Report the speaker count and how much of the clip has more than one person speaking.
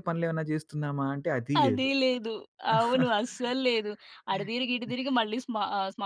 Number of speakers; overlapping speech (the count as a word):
two, about 5%